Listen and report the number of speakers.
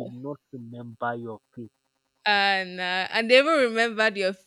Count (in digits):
2